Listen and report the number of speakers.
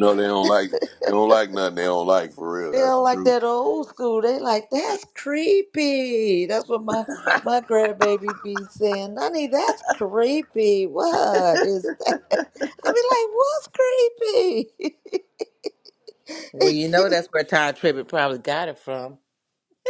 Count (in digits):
3